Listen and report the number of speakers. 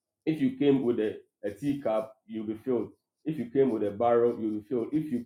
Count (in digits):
1